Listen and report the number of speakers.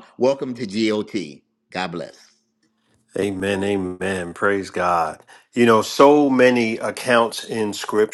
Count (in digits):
2